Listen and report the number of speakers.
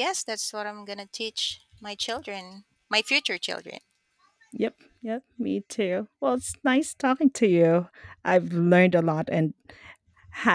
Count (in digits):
2